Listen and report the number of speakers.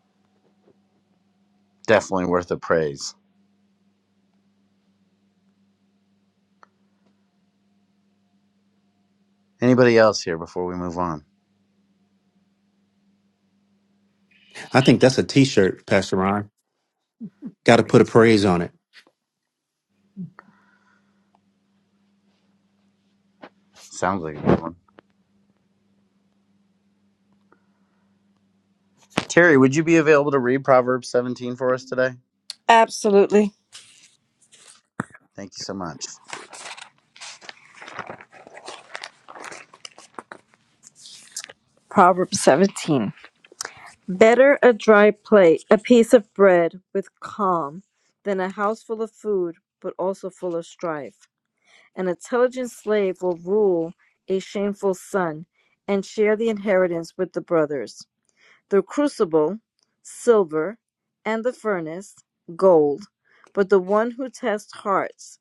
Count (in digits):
3